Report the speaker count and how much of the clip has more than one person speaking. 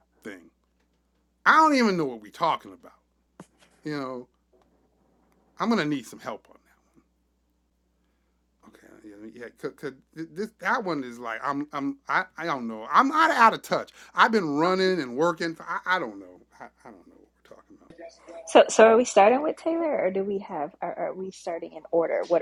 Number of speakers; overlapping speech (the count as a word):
two, no overlap